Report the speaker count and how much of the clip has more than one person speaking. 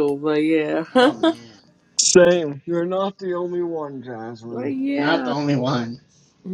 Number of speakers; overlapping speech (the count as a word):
three, about 8%